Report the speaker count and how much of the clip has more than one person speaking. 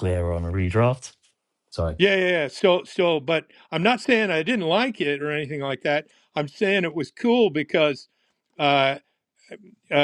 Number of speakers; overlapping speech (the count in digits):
2, no overlap